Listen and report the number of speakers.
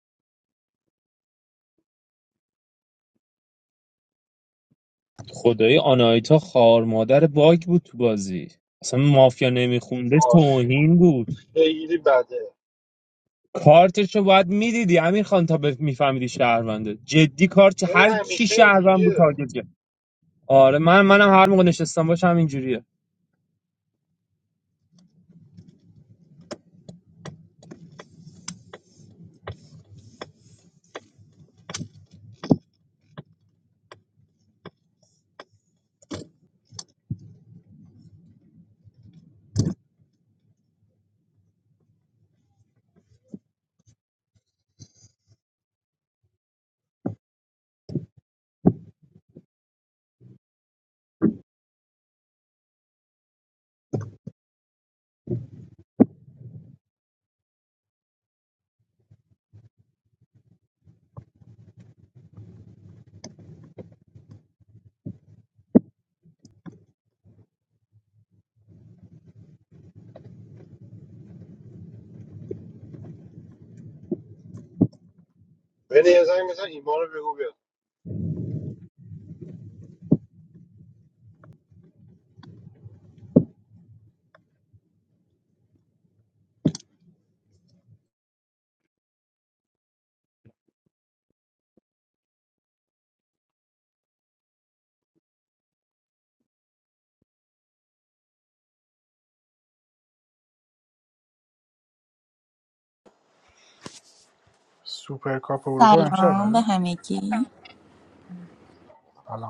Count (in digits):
4